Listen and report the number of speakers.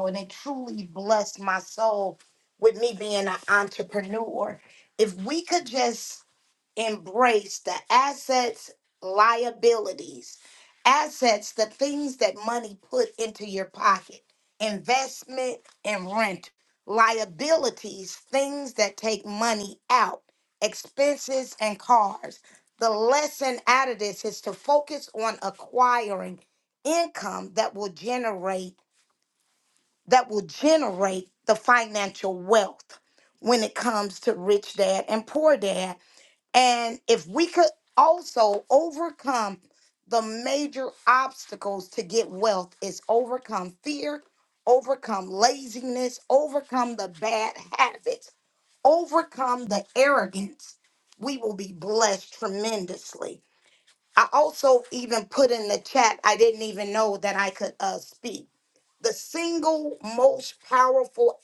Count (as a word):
one